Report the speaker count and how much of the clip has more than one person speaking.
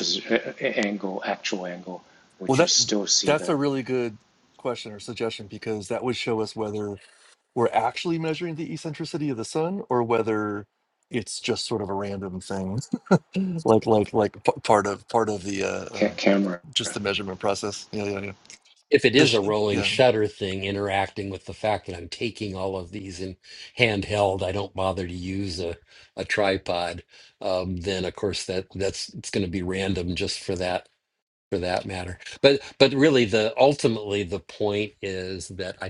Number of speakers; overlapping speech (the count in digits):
3, about 4%